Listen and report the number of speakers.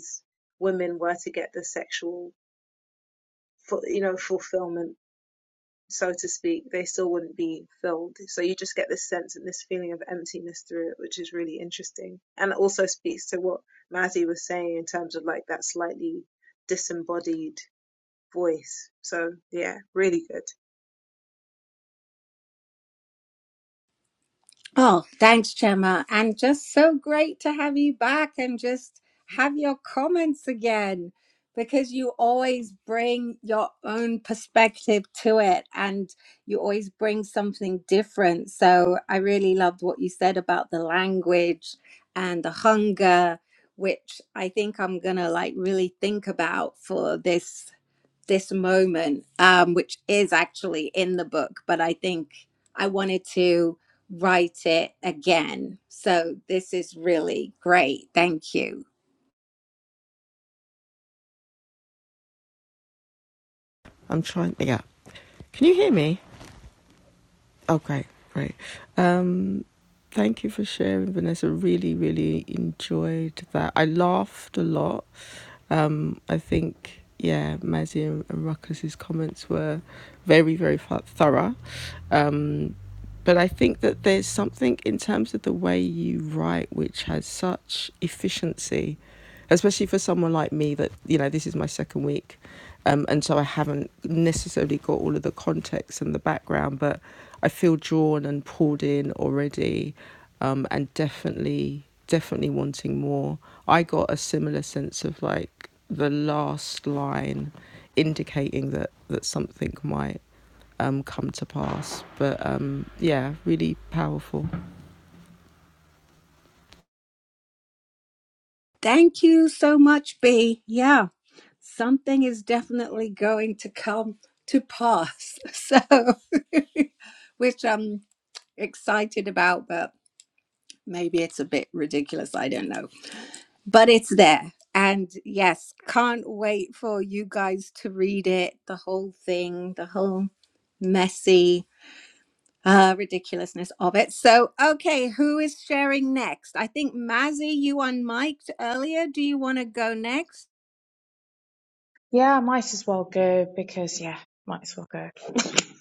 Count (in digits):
4